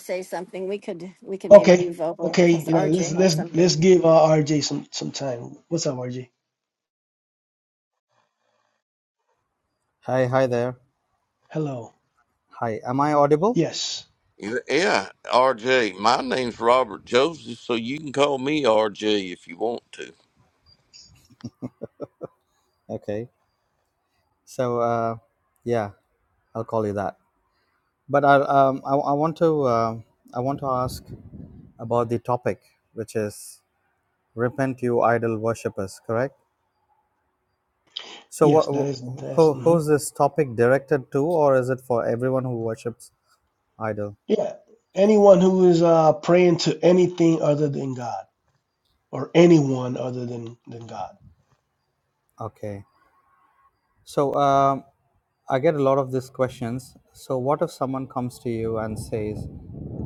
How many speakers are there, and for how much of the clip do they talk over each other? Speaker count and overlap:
four, about 5%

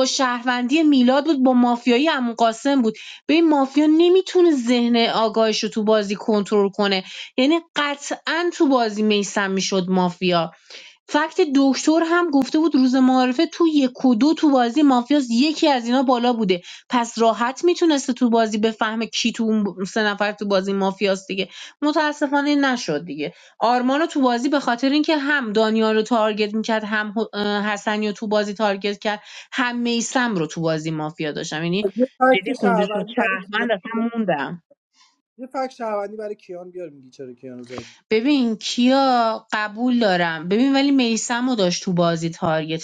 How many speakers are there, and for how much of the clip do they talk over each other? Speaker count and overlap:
two, about 3%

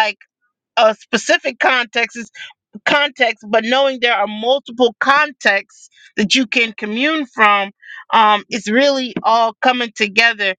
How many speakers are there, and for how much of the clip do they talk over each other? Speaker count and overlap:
one, no overlap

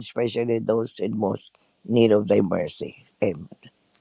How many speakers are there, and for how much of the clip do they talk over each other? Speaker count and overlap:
one, no overlap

